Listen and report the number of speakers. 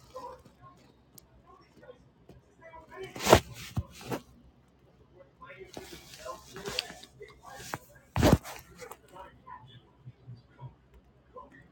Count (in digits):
0